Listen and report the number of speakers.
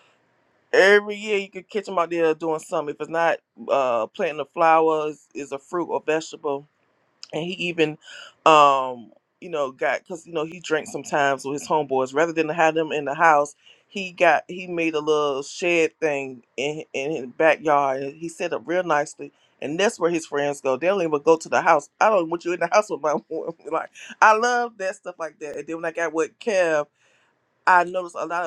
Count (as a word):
one